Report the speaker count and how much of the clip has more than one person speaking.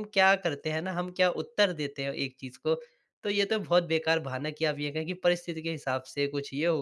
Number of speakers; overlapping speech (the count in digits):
1, no overlap